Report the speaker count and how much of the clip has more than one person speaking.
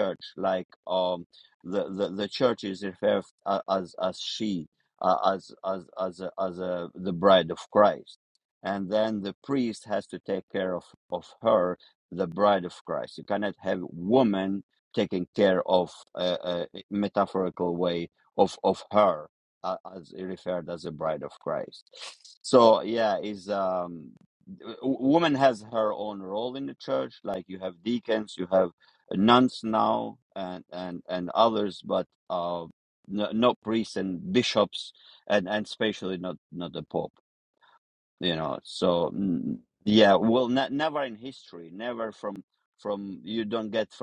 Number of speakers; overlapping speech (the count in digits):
1, no overlap